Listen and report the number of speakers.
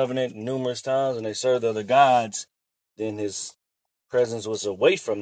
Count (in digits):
1